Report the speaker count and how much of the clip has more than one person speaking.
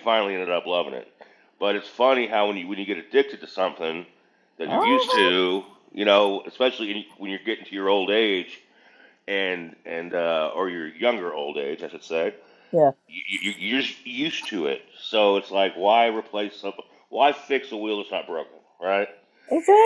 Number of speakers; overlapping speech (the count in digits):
2, about 3%